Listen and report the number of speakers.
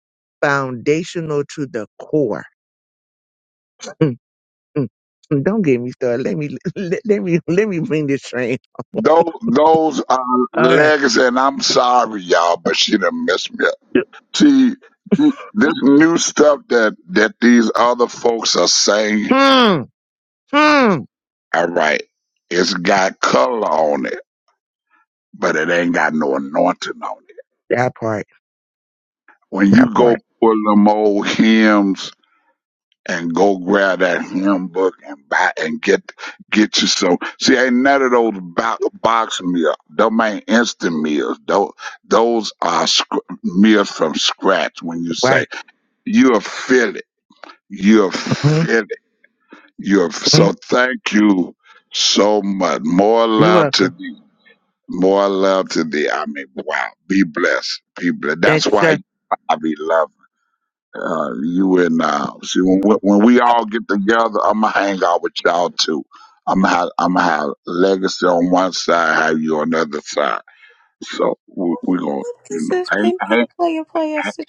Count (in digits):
3